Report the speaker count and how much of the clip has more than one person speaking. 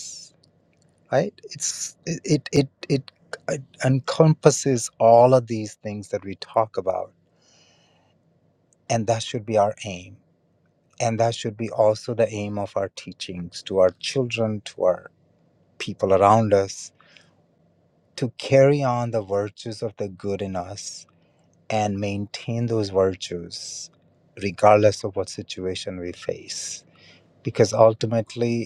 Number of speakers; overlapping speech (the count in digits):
1, no overlap